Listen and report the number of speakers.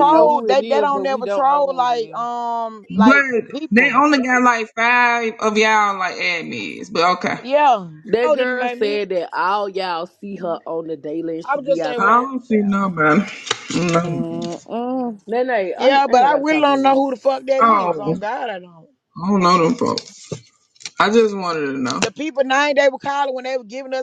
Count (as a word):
four